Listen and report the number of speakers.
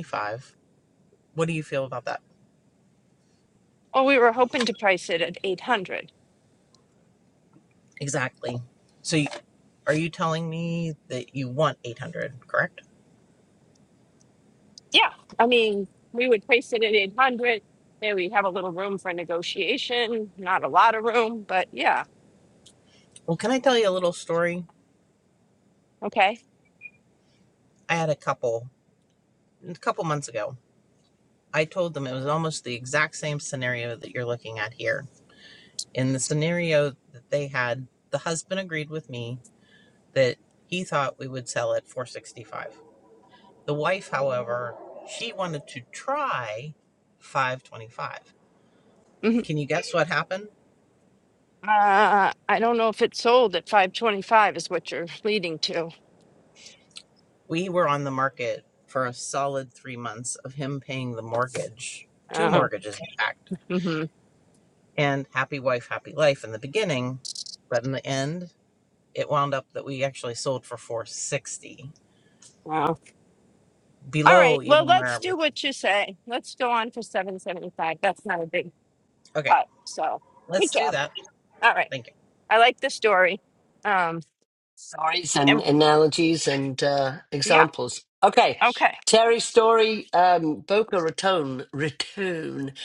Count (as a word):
three